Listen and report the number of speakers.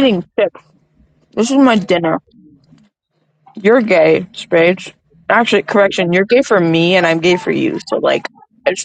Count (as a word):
one